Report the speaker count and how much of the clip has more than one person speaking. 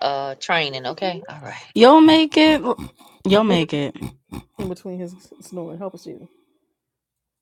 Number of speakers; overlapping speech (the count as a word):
three, about 8%